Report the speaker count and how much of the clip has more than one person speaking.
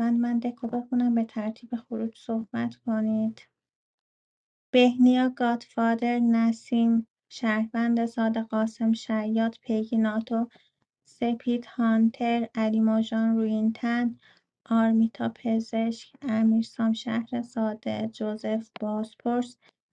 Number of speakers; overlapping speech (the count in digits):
1, no overlap